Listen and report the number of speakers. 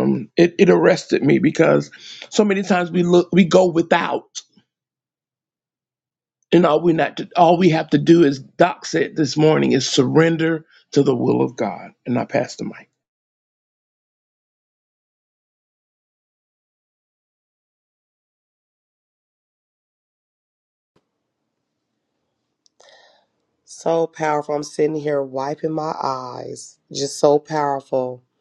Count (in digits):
2